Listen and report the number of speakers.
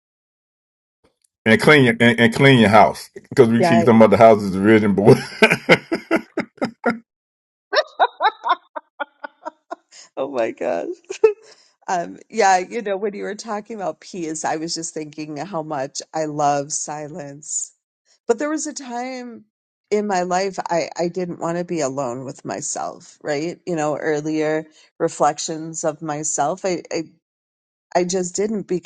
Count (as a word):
two